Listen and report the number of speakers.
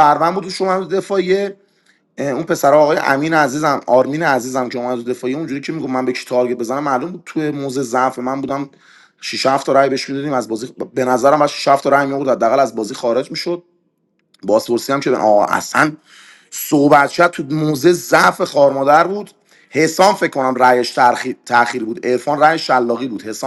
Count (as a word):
one